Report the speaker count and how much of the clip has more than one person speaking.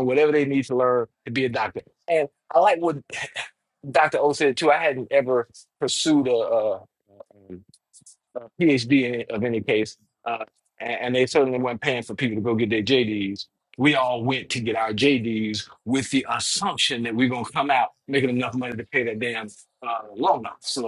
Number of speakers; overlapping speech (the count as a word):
one, no overlap